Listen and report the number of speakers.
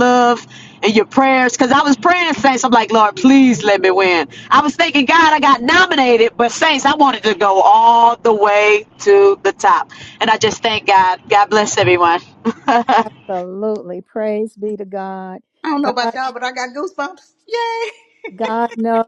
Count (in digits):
3